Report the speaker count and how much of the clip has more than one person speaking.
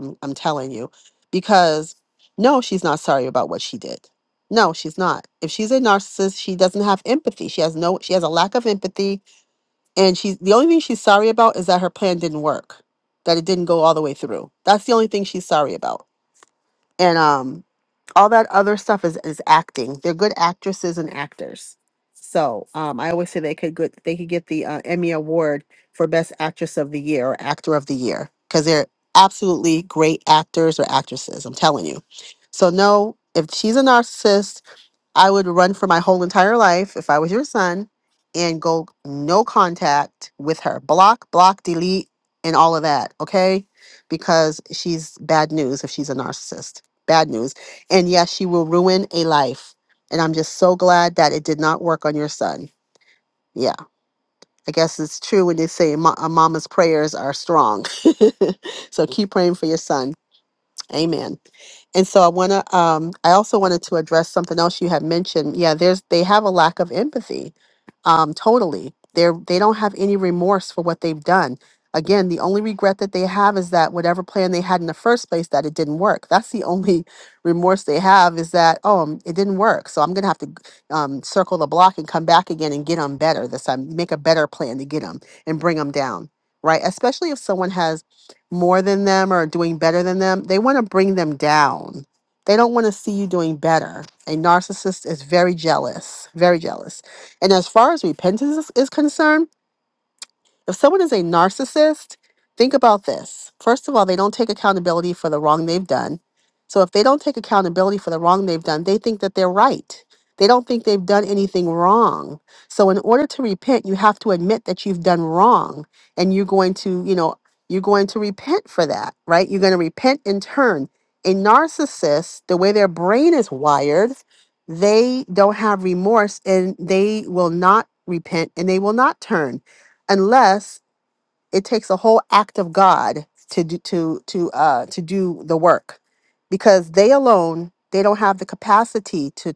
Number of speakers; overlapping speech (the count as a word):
one, no overlap